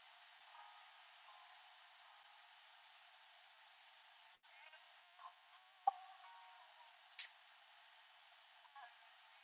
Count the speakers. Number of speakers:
zero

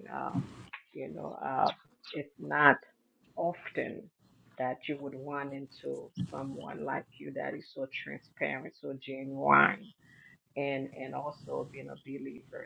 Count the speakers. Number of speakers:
one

